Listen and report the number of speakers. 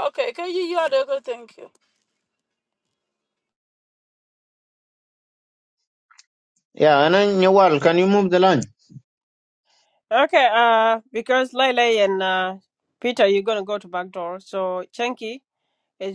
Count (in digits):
3